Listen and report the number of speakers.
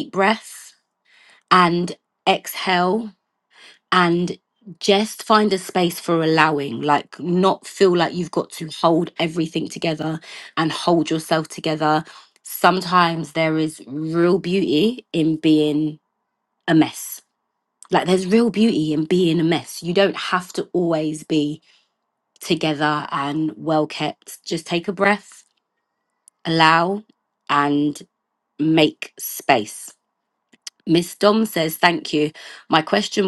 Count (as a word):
one